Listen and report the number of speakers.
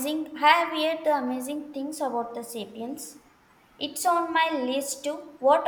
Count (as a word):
one